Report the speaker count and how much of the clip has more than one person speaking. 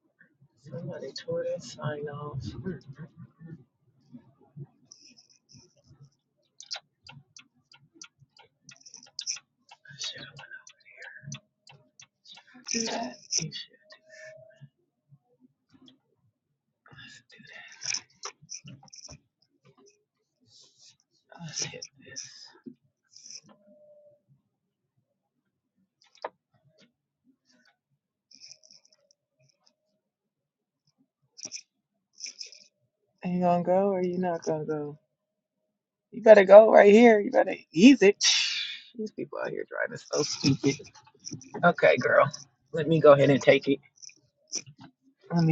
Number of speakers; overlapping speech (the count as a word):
one, no overlap